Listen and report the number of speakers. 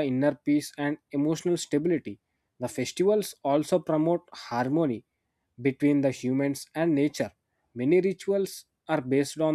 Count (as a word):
one